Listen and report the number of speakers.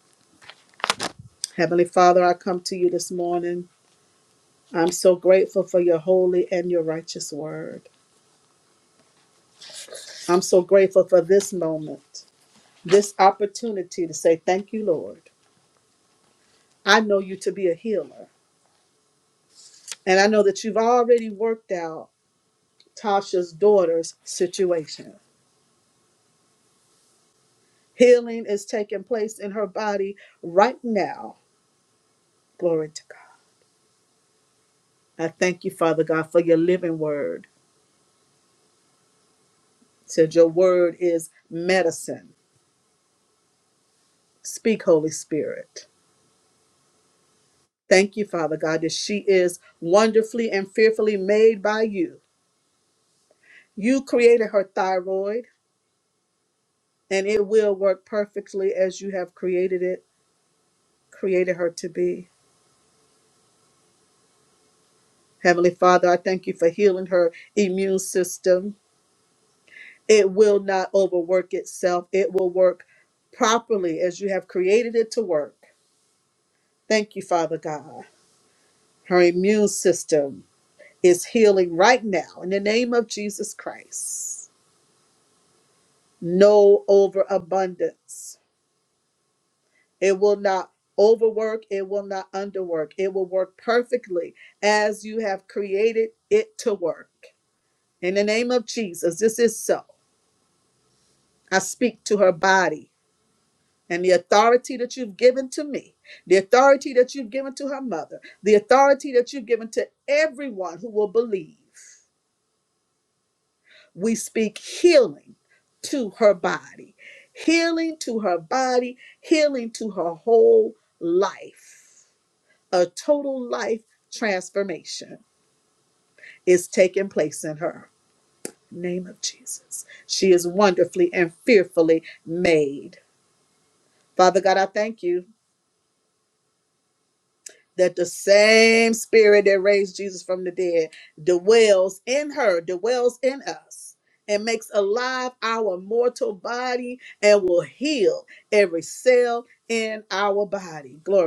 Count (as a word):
one